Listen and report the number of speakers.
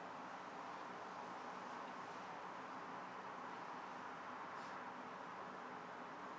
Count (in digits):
0